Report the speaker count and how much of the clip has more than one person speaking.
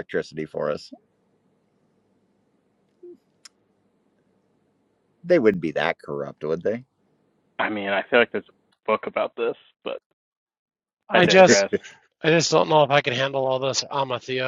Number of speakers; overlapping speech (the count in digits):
3, about 3%